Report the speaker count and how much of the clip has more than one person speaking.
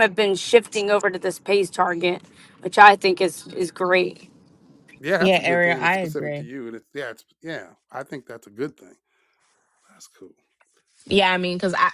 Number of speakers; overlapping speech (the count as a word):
three, about 10%